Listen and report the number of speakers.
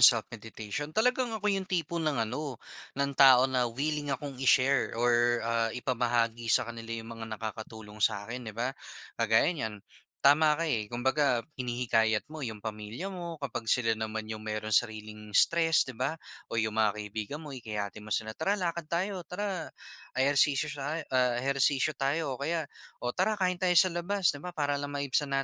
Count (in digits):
1